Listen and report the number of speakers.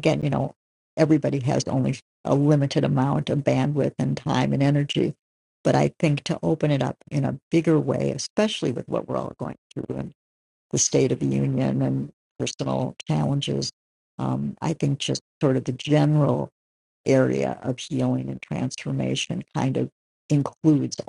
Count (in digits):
1